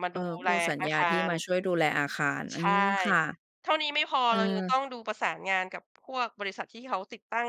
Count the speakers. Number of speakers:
two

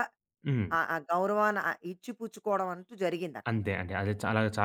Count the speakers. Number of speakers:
two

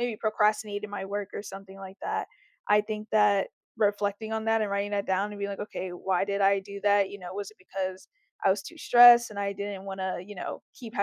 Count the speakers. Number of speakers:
one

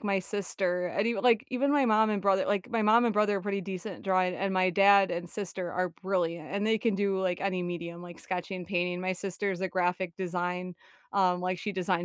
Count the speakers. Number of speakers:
one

